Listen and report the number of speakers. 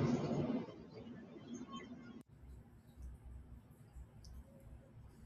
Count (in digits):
0